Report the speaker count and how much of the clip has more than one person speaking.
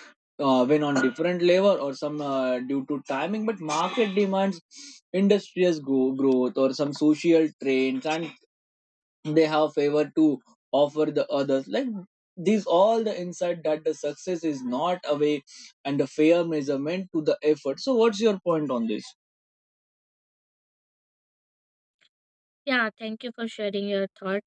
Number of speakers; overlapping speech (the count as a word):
two, no overlap